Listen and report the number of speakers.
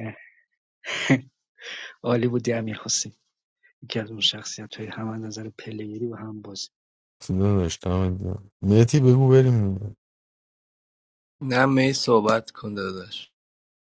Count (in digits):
3